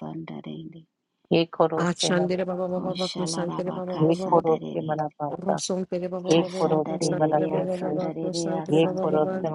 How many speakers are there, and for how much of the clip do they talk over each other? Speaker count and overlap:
3, about 66%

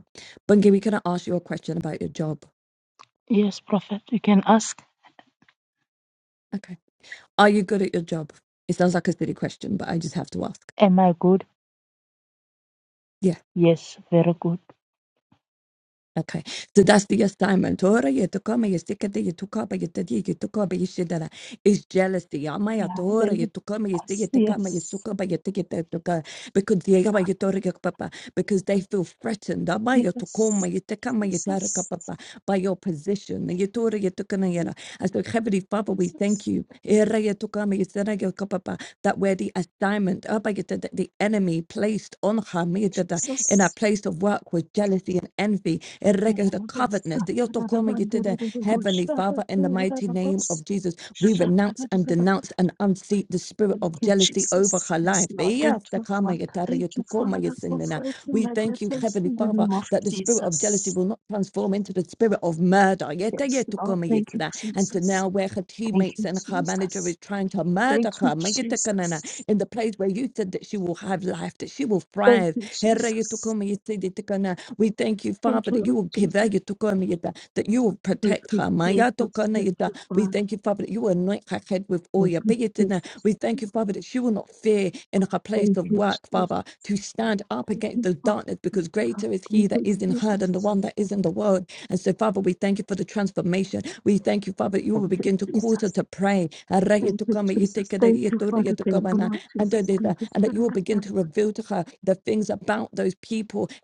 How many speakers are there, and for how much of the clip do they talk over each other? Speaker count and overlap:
2, about 21%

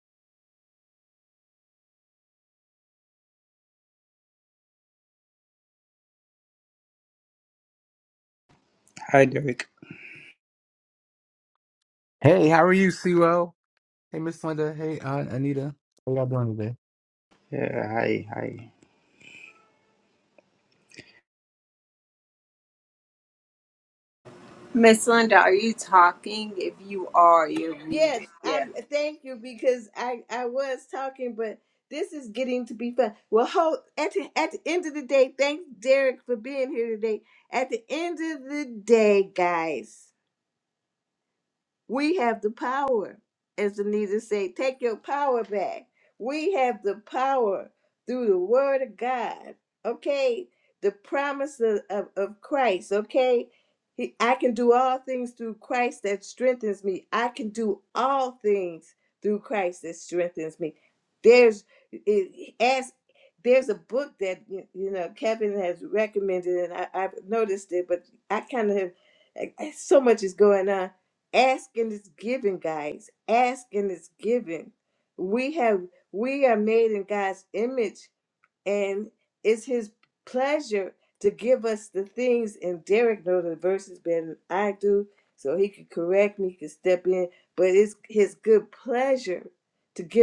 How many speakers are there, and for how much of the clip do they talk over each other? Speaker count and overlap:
4, about 1%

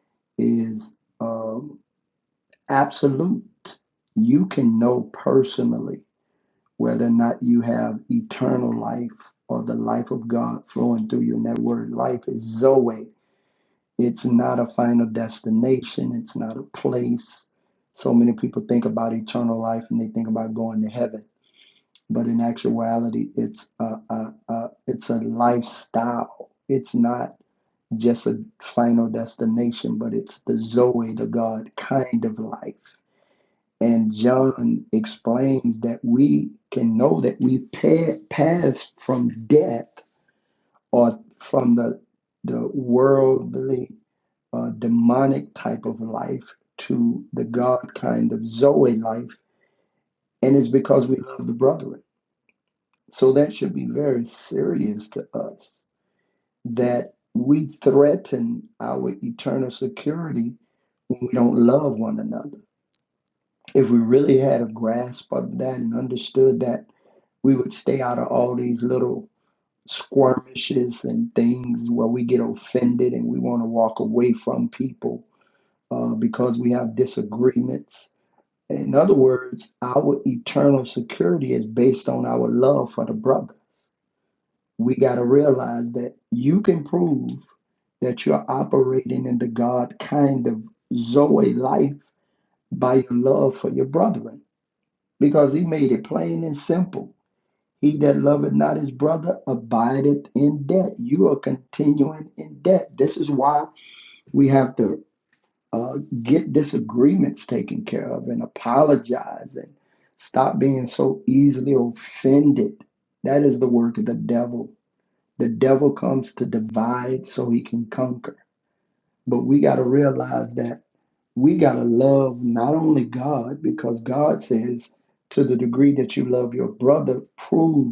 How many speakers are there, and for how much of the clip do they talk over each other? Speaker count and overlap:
1, no overlap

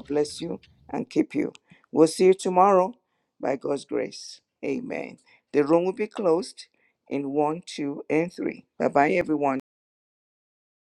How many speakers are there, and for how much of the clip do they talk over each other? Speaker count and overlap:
1, no overlap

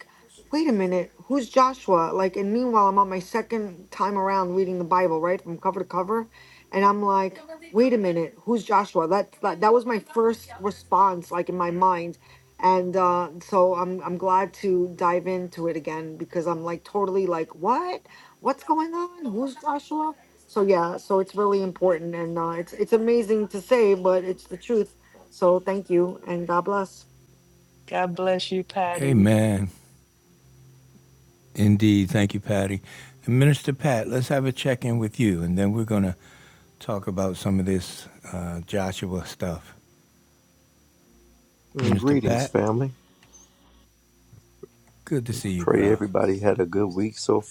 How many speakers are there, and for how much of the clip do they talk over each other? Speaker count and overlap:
4, about 3%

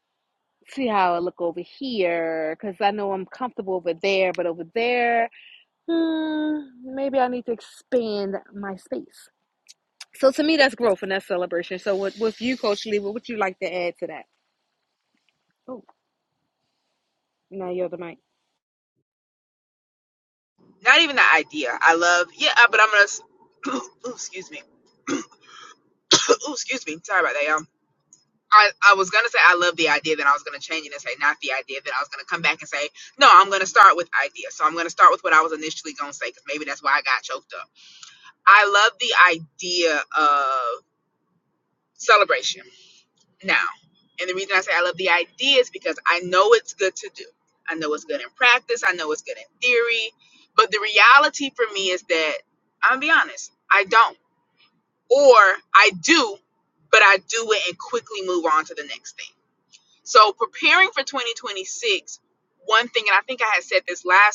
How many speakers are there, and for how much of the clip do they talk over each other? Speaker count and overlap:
2, no overlap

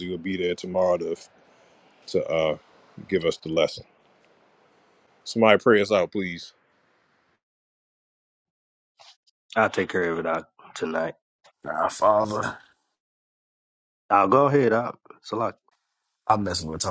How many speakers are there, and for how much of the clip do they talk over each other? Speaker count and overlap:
3, no overlap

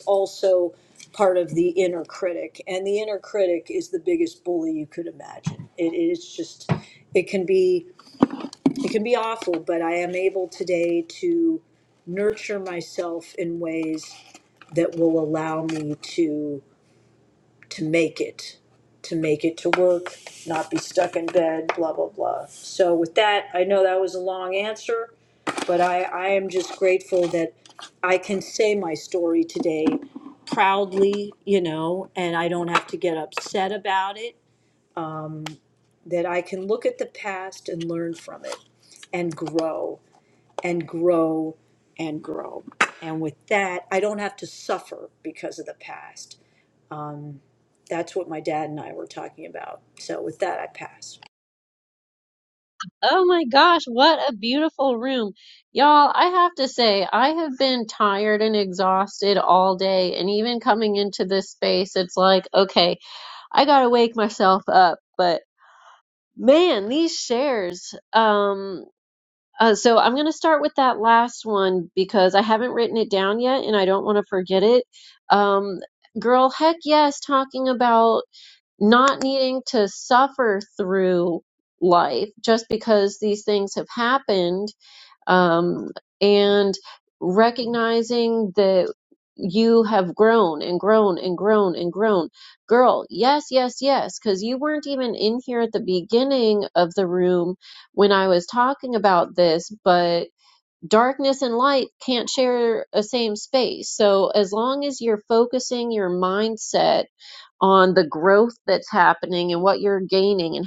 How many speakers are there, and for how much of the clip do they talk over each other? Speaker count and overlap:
2, no overlap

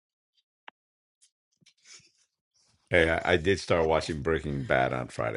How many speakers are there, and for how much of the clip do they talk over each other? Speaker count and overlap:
1, no overlap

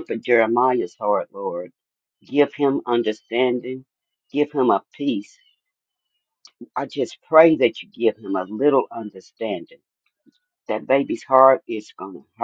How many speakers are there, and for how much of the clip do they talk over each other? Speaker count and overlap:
1, no overlap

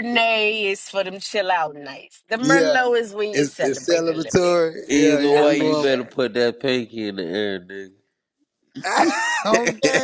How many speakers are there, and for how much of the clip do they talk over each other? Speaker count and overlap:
3, about 29%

